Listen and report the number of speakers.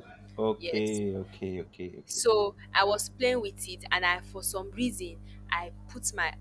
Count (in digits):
2